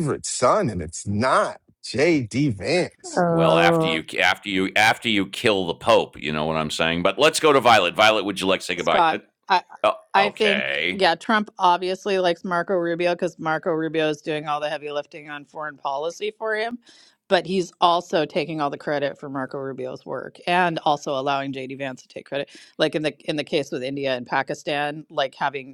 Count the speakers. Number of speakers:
3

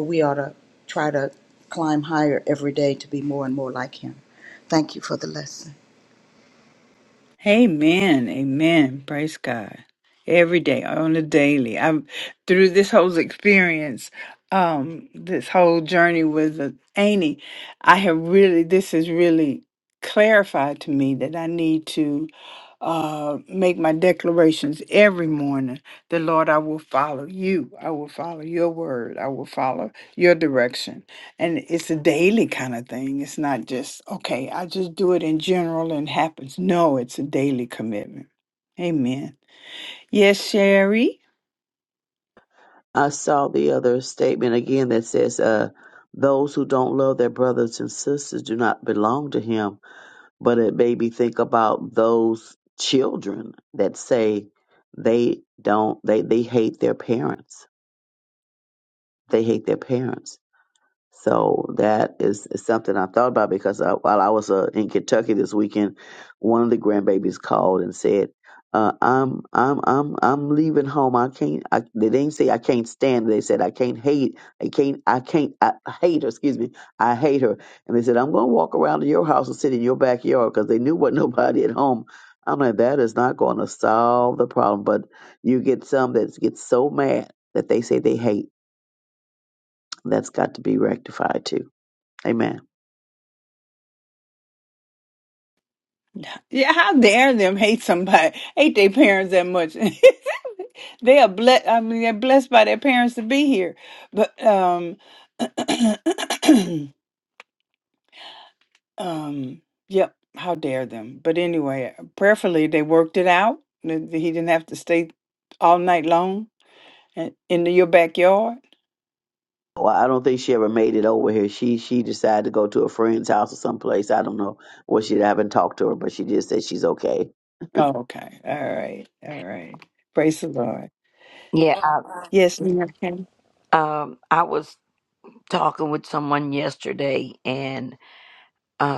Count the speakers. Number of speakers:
4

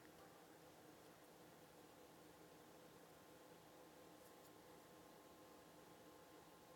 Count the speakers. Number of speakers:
0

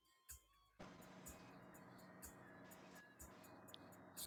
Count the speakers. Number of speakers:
0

